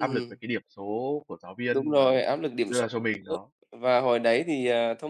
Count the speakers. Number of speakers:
2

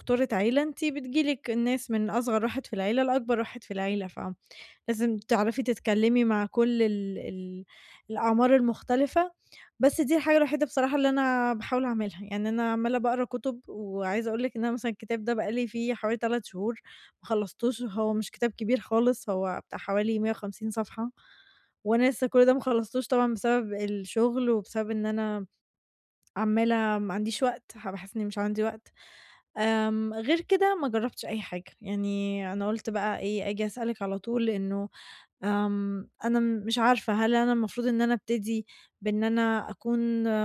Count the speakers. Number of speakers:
1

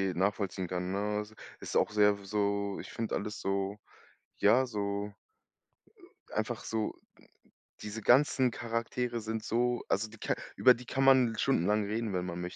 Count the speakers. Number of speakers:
1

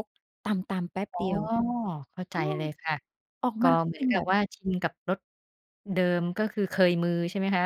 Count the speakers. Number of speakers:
2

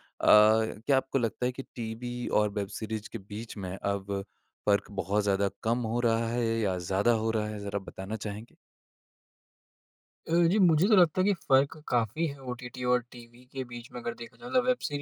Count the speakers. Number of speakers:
2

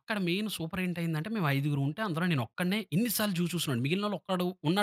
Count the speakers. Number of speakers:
1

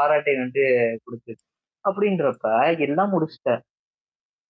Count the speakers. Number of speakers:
1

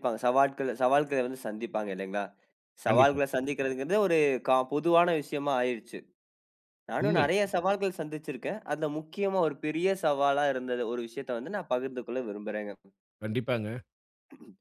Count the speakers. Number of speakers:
2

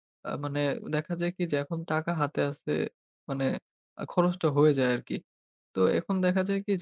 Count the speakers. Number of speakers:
1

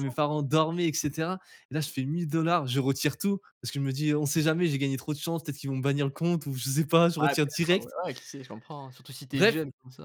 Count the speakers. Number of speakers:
2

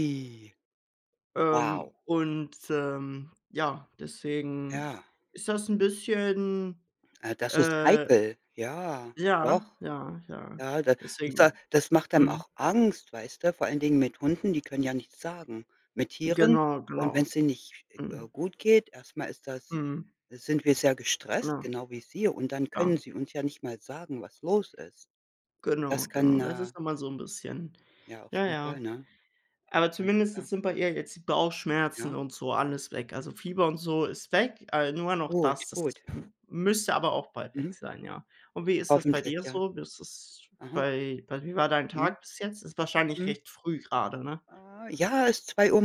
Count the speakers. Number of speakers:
2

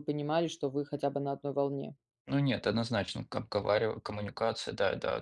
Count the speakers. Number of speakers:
2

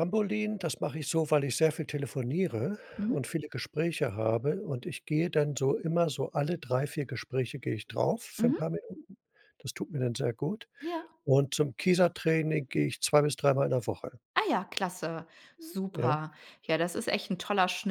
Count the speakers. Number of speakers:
2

